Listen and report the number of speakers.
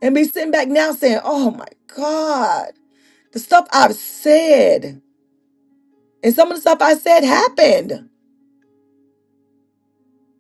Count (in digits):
1